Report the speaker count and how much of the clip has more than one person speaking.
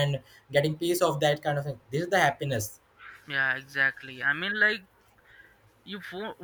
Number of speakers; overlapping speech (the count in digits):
2, no overlap